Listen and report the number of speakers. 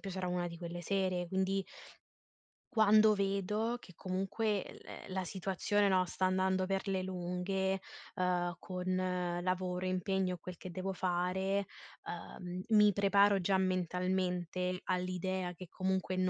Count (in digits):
1